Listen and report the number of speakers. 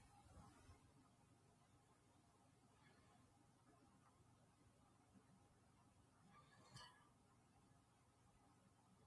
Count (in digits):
0